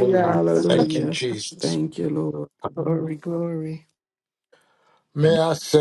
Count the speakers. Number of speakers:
three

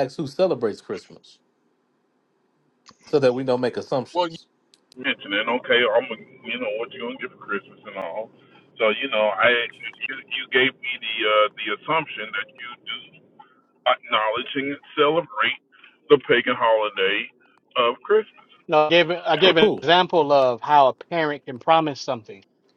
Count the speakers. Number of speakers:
three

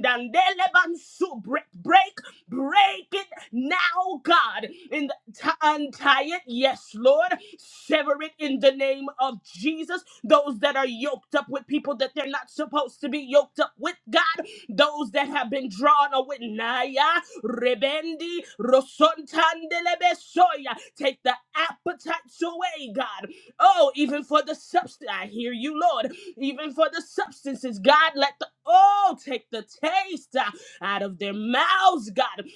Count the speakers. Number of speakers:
one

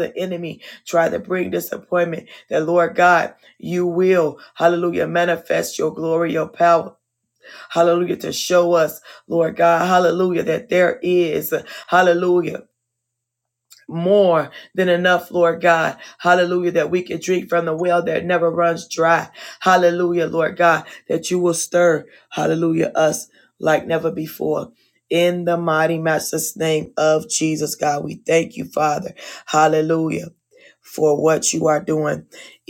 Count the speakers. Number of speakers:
one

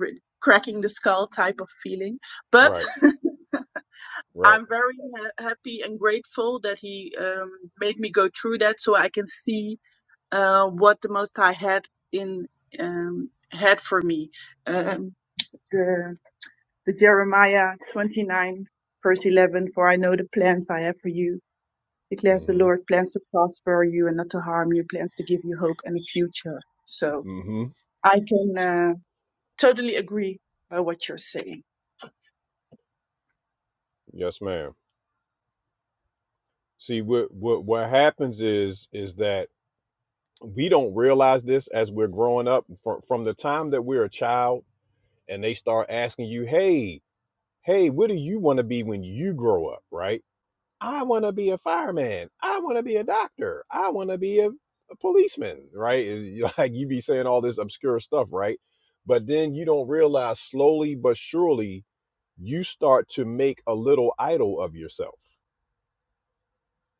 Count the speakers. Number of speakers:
two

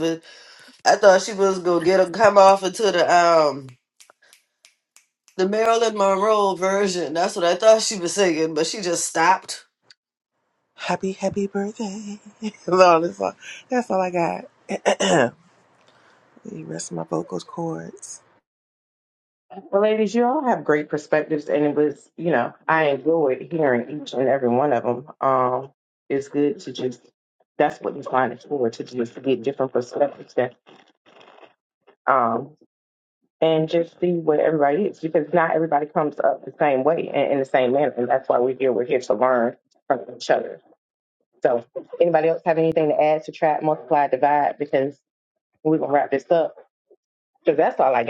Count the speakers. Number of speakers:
three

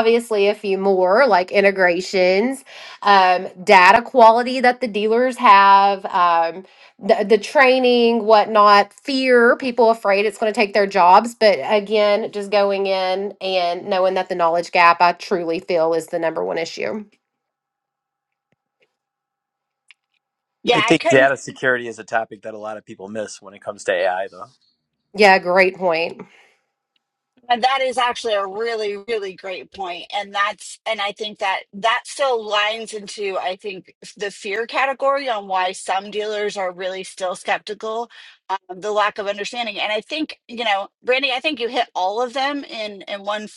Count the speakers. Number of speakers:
three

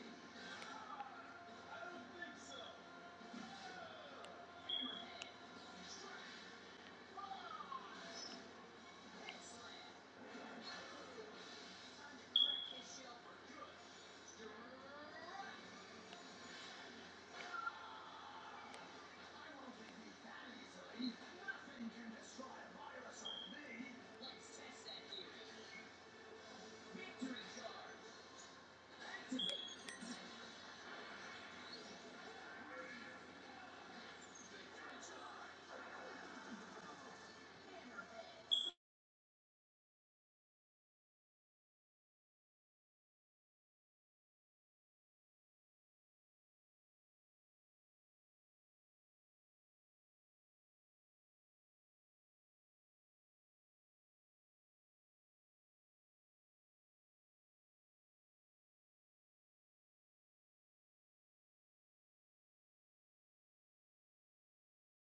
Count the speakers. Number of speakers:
zero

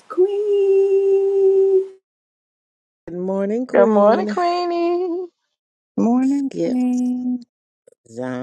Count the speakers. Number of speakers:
four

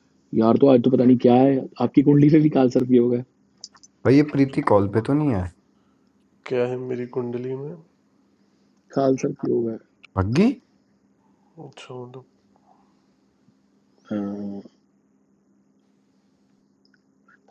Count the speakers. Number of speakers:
three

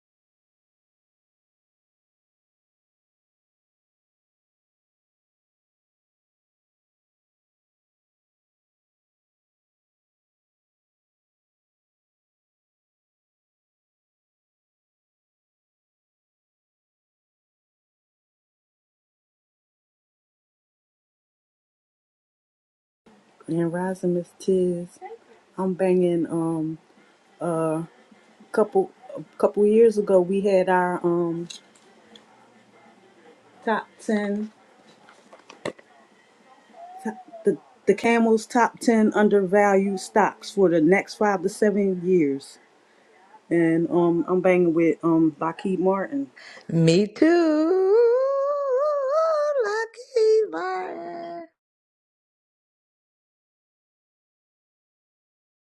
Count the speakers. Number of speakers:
two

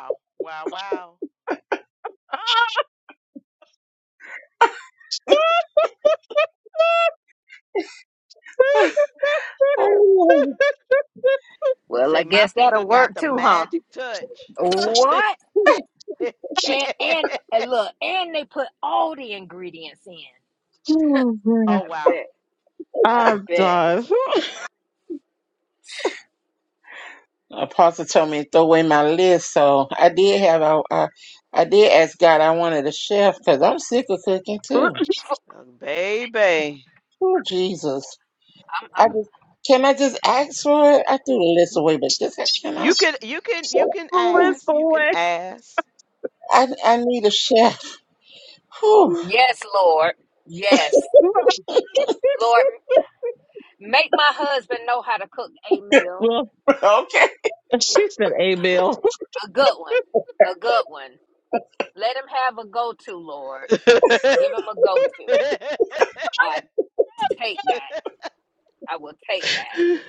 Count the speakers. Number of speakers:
four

